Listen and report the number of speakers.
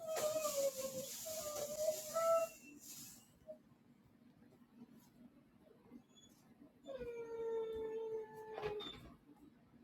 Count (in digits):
0